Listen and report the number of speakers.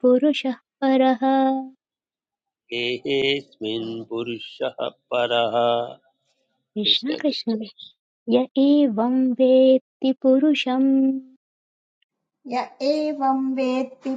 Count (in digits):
3